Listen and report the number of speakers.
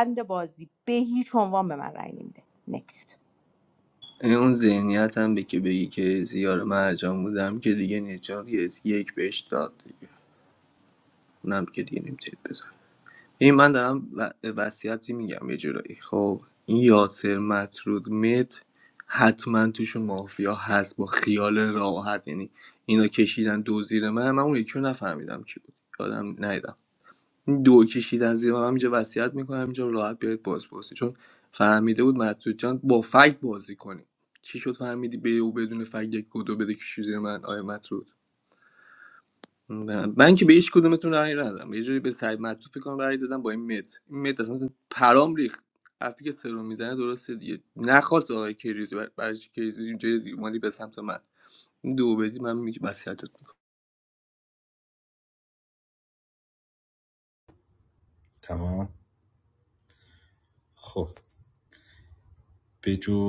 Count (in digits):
3